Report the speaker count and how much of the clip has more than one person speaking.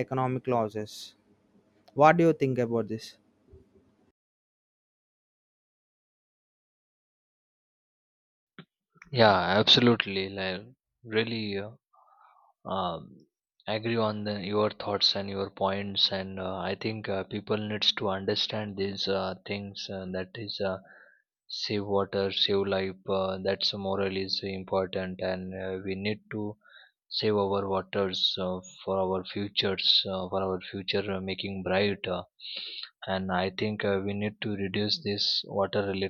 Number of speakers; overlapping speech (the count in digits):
2, no overlap